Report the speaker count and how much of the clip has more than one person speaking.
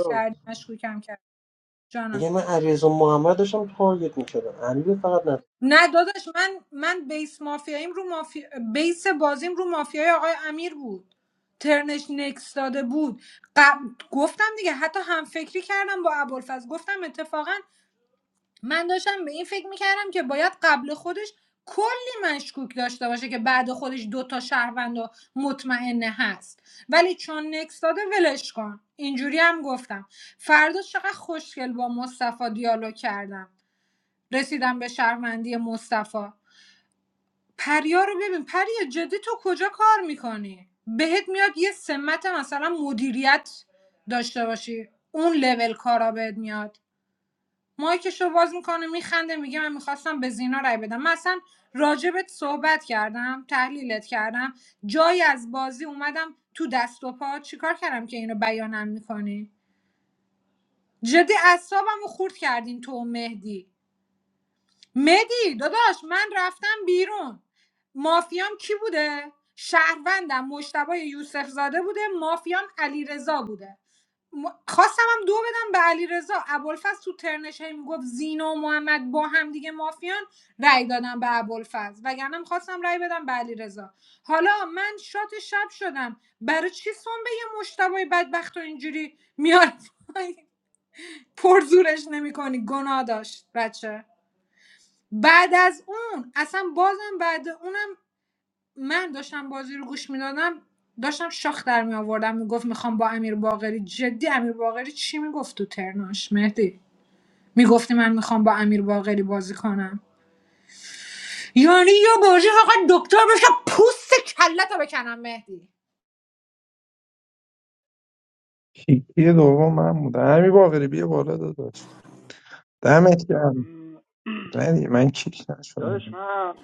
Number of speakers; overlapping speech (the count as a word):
four, under 1%